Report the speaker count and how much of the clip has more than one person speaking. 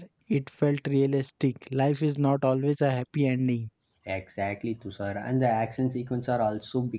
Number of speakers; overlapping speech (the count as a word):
two, no overlap